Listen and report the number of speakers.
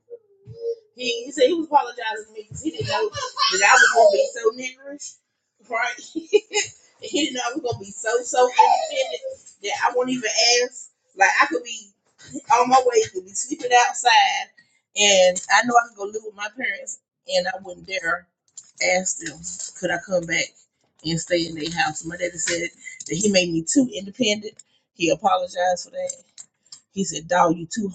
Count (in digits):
1